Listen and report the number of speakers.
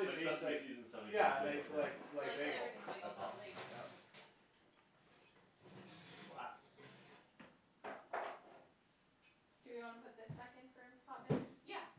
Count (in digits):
4